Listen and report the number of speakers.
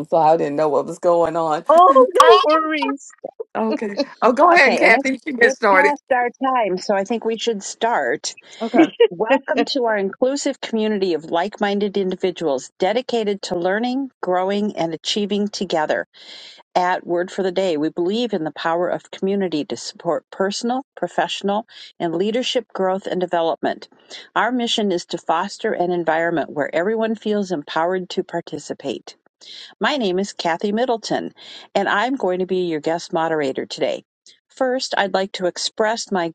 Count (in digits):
3